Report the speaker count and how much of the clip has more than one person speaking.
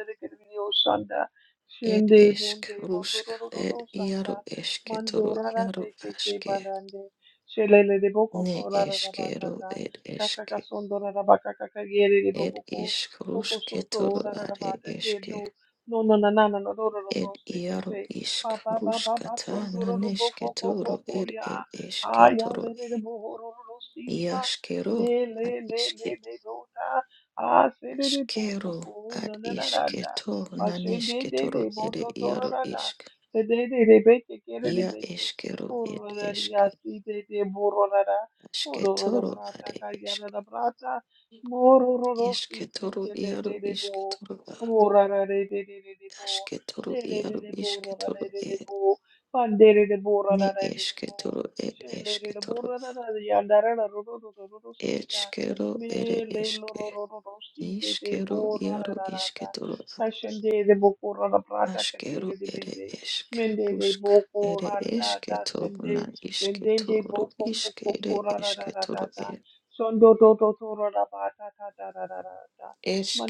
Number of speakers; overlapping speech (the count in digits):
2, about 49%